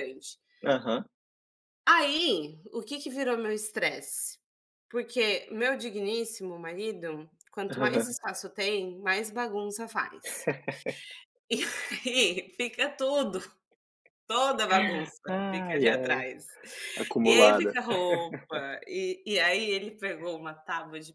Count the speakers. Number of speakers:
two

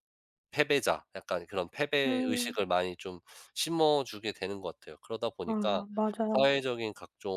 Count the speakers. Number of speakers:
two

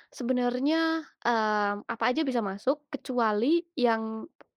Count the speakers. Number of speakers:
one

